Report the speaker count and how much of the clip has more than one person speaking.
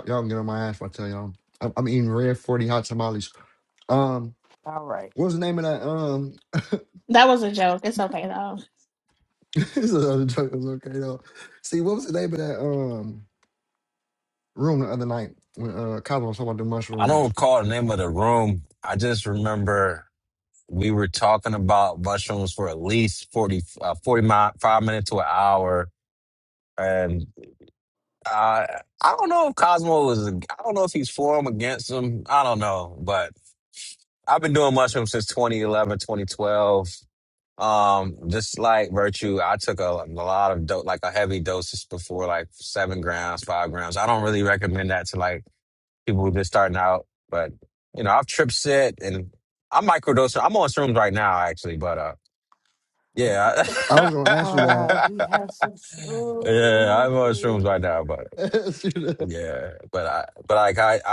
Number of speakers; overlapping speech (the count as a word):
four, about 3%